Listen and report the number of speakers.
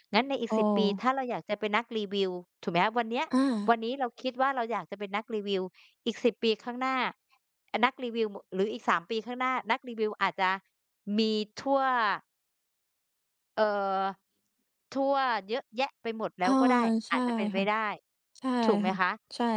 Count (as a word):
two